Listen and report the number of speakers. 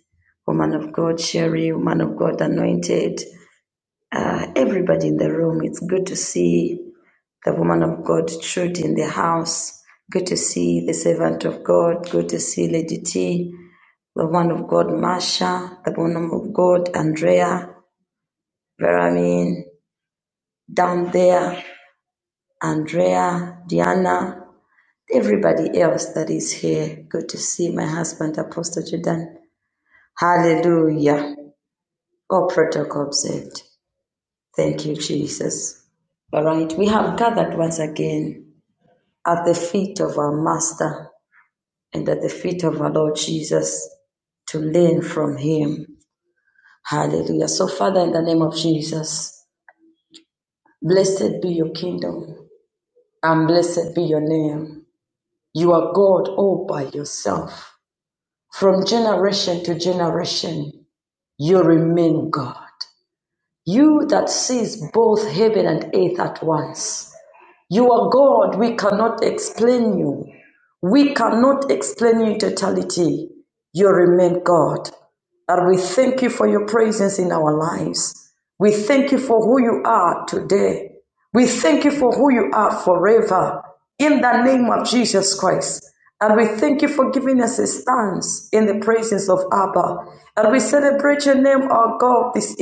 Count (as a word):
one